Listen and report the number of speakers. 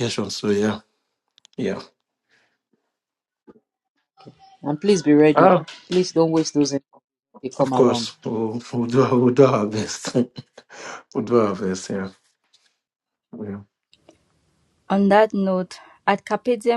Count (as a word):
three